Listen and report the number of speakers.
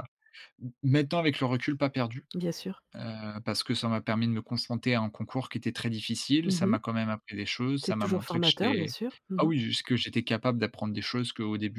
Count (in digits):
2